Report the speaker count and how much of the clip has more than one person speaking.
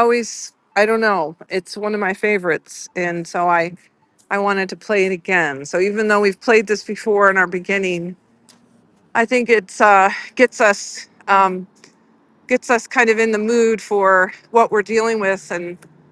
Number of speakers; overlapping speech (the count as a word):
one, no overlap